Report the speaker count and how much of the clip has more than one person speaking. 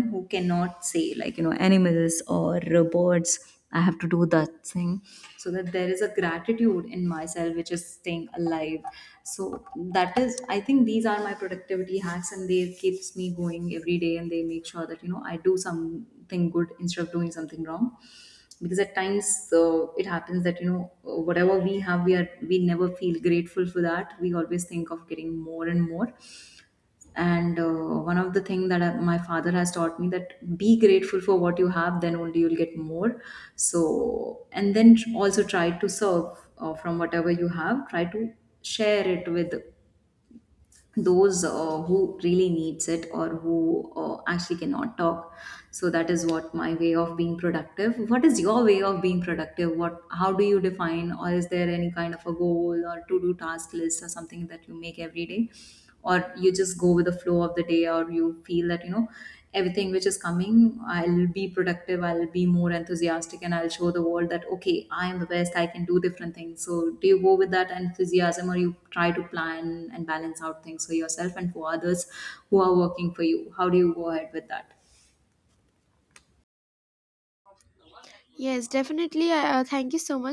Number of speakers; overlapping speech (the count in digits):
2, no overlap